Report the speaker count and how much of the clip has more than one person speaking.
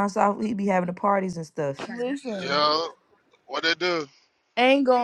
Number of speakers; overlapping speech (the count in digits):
3, about 4%